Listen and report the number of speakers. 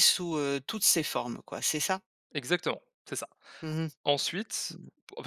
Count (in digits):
2